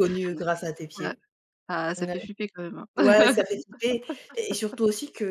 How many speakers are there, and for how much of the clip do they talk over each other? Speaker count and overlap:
two, about 8%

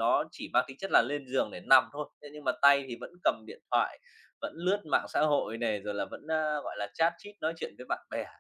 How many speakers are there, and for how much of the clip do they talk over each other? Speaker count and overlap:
one, no overlap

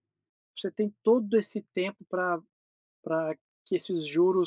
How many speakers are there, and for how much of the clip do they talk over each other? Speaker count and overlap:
one, no overlap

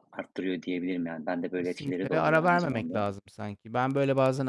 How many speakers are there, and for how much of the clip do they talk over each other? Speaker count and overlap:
two, about 32%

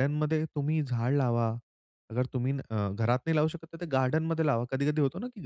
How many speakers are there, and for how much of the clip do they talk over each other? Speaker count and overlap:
one, no overlap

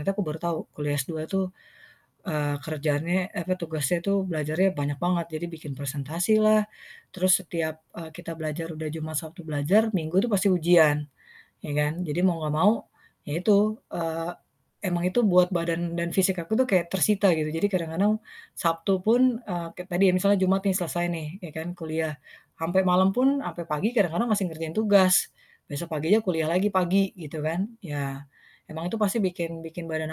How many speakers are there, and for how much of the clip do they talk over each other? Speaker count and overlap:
one, no overlap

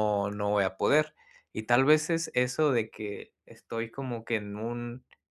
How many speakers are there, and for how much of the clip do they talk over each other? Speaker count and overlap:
one, no overlap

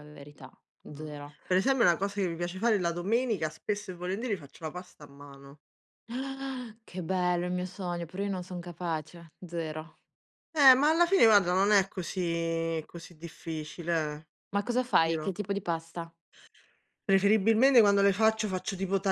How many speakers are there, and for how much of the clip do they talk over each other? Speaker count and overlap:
two, about 2%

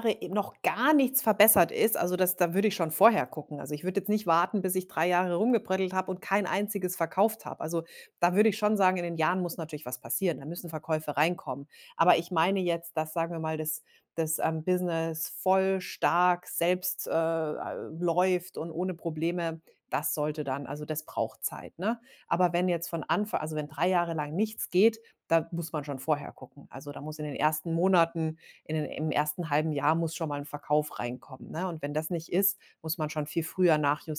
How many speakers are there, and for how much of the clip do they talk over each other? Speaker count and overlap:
one, no overlap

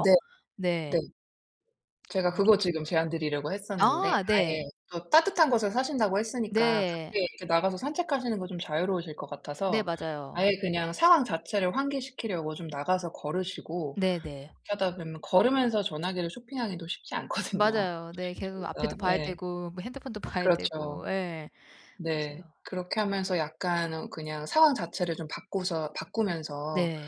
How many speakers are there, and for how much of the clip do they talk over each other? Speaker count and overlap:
two, about 14%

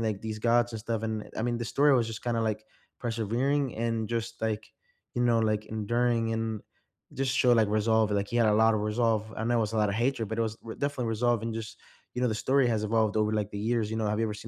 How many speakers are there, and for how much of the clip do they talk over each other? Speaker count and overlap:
one, no overlap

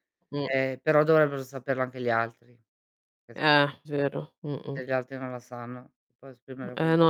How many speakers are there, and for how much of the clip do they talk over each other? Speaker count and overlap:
two, about 8%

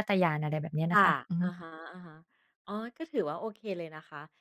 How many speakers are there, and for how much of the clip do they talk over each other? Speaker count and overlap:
two, about 13%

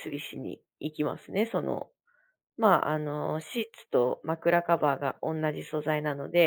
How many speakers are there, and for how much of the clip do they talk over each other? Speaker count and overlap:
one, no overlap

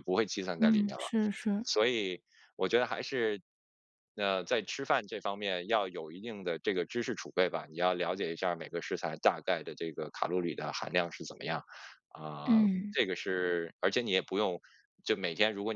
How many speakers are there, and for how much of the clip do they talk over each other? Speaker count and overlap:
two, about 6%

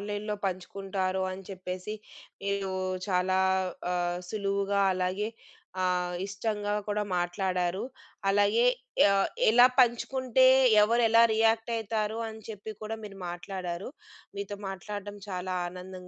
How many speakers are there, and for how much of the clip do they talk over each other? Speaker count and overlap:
one, no overlap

